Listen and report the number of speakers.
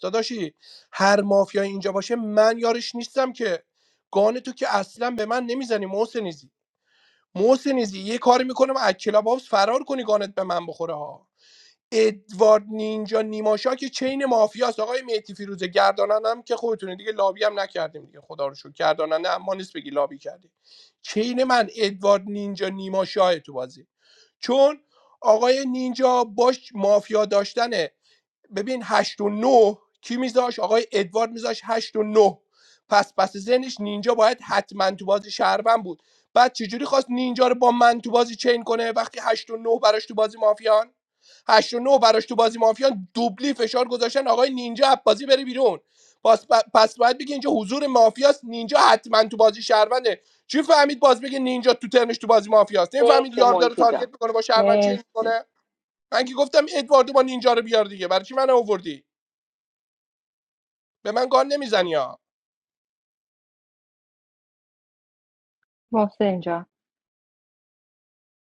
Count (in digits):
2